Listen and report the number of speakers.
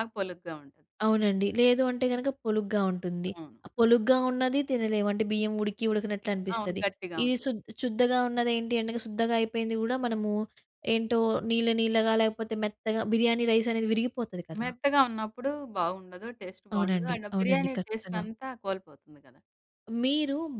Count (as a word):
two